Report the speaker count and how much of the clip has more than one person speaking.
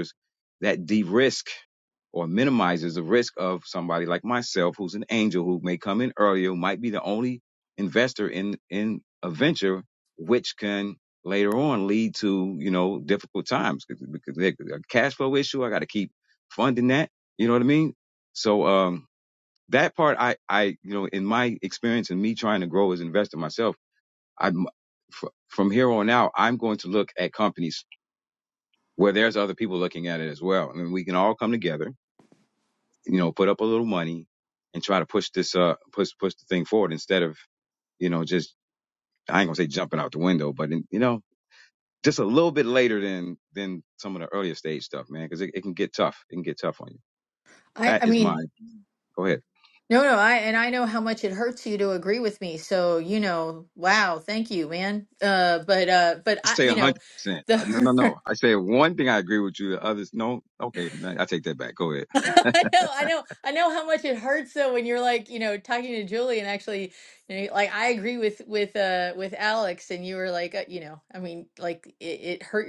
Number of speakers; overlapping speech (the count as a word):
two, about 2%